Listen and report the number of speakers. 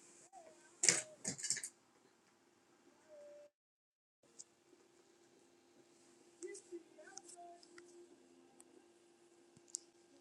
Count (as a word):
zero